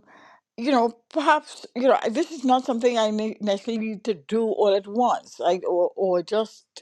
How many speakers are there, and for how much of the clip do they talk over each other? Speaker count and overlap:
one, no overlap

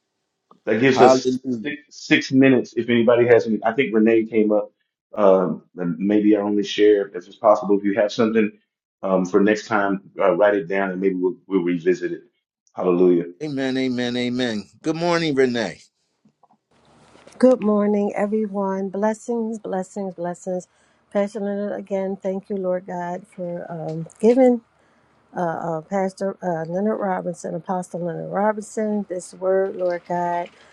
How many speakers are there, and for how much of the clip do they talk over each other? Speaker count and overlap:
three, about 3%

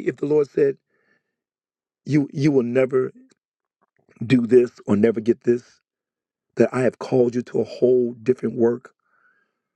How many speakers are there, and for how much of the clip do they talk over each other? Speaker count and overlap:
one, no overlap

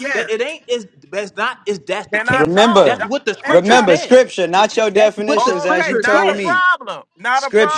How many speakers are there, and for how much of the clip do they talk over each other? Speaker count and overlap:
three, about 57%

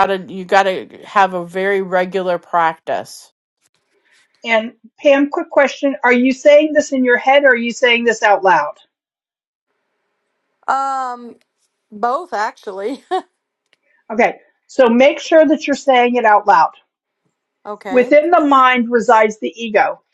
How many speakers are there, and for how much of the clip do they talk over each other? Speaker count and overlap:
three, about 1%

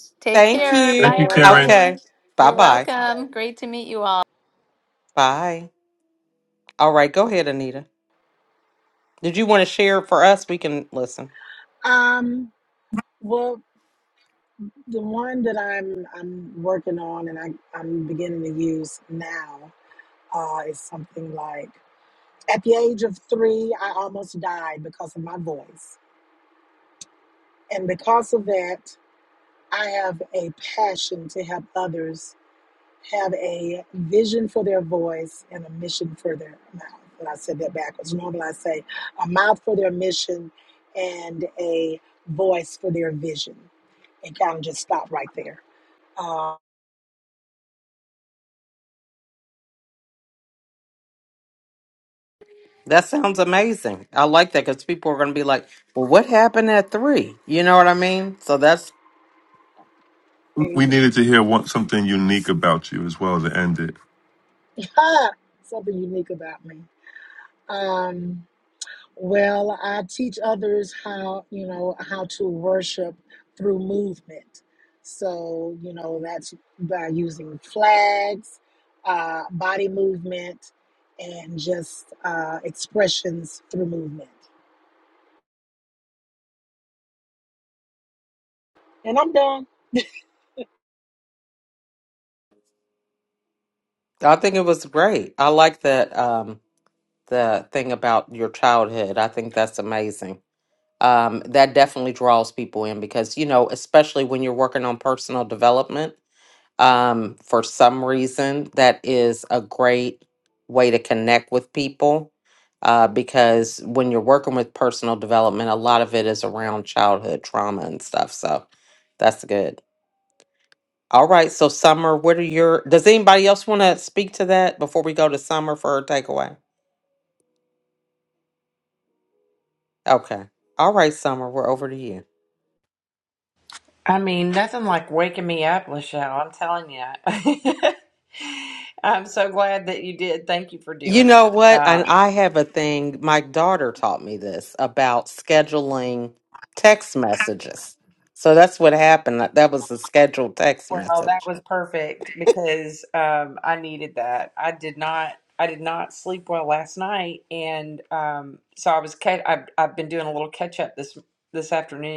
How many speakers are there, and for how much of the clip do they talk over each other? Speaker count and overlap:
five, about 3%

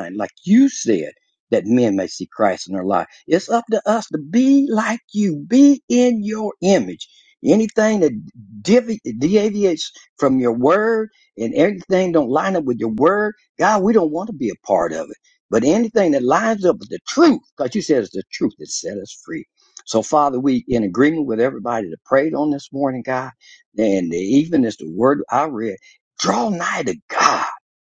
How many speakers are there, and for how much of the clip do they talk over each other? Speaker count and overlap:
one, no overlap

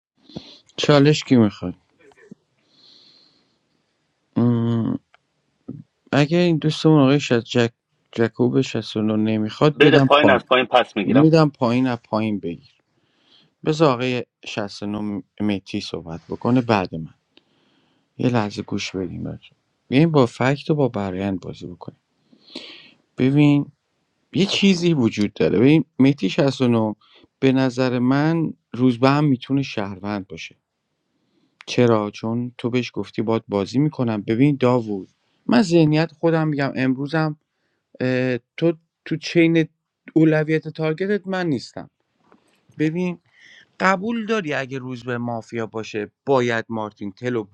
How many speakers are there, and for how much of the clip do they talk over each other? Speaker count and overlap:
two, about 2%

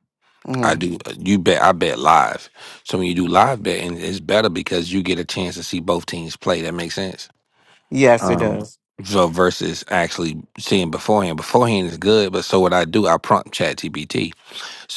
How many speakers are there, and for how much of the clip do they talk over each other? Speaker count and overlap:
two, about 4%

